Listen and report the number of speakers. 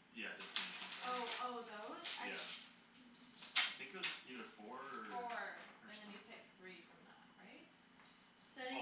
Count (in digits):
3